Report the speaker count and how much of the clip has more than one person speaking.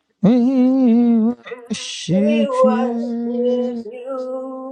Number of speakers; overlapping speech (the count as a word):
two, about 30%